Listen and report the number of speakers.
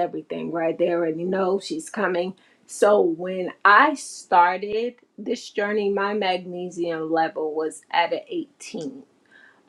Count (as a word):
one